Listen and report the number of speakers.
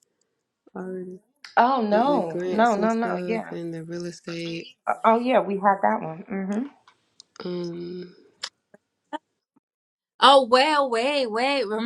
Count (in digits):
3